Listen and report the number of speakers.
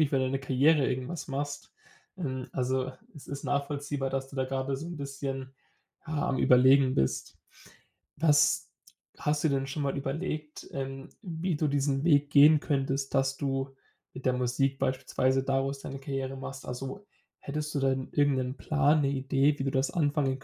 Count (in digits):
1